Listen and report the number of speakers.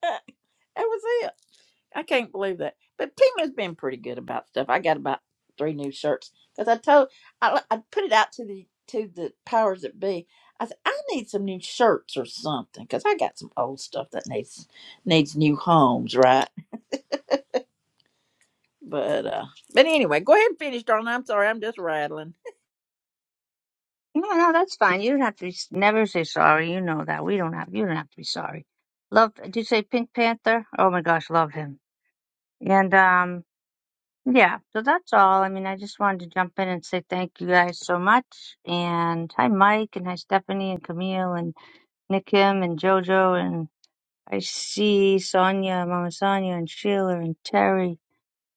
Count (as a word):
two